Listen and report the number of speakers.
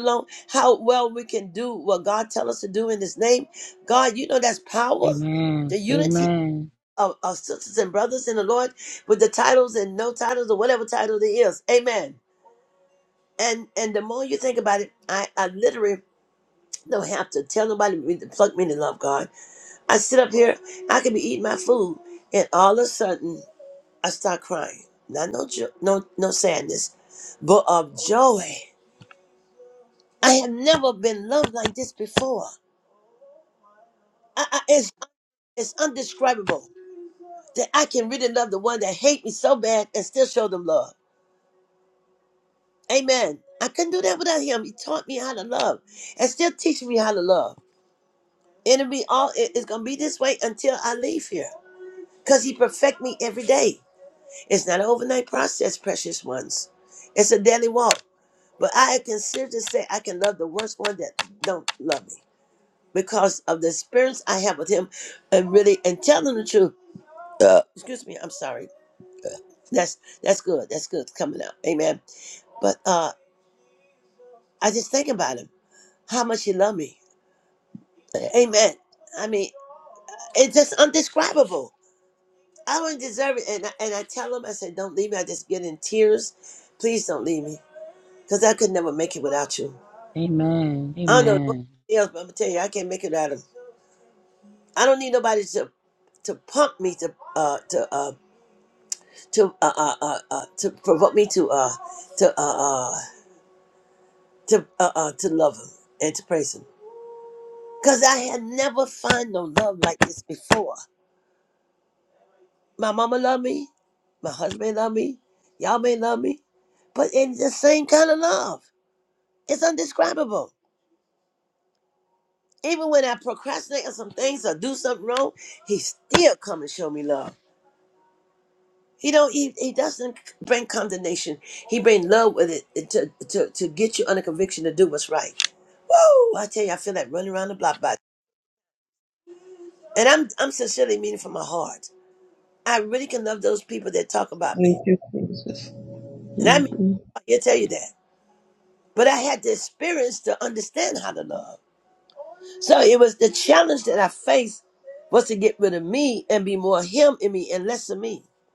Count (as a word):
three